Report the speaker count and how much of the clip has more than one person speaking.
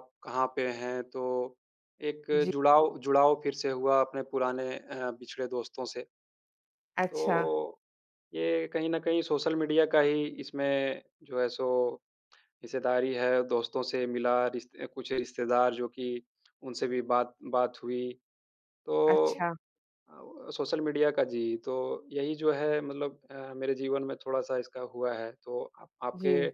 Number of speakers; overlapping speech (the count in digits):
2, about 3%